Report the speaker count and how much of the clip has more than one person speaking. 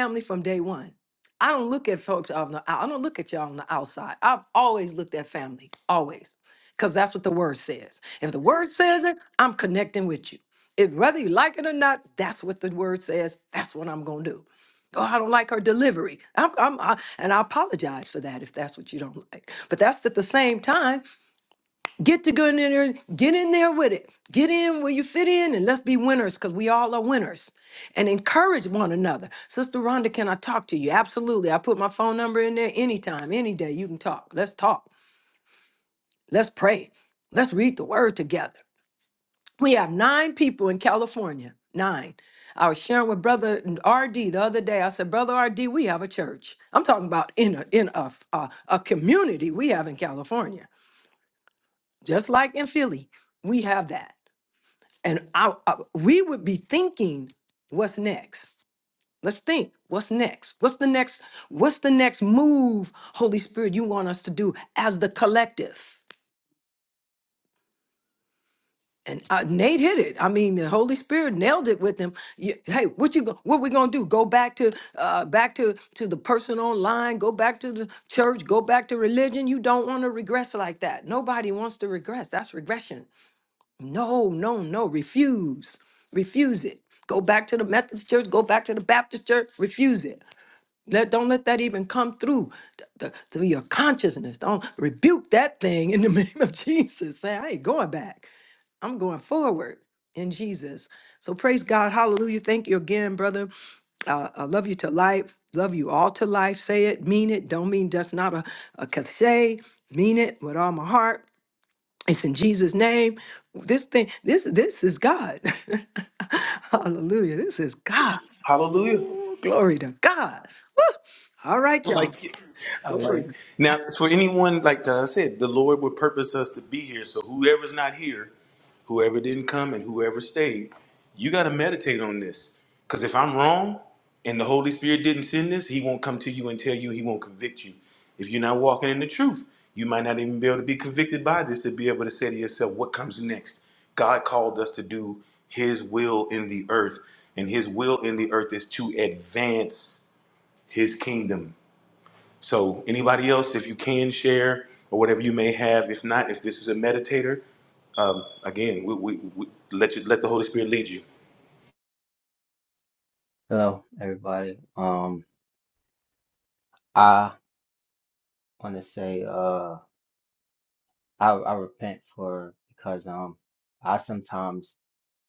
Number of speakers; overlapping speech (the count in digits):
3, under 1%